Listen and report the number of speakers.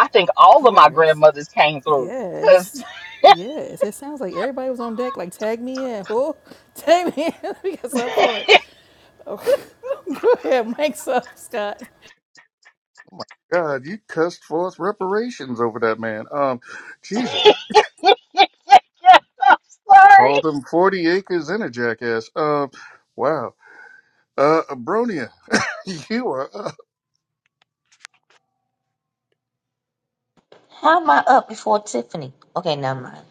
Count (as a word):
four